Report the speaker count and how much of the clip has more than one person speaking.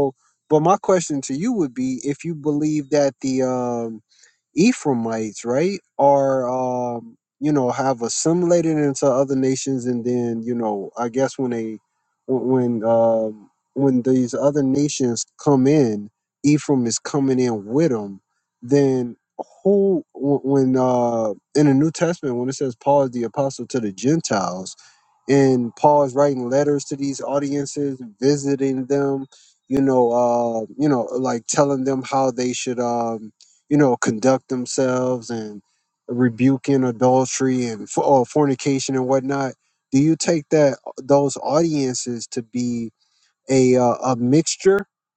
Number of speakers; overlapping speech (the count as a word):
one, no overlap